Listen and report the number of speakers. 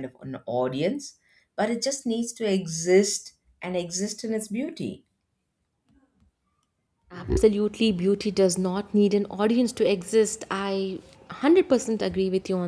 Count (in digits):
2